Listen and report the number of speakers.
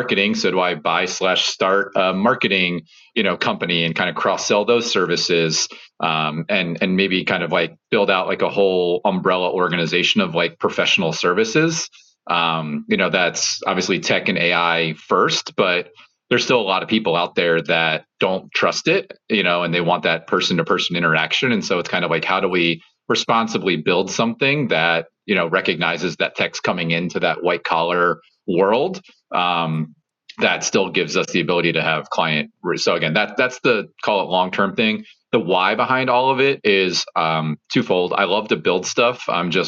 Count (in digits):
1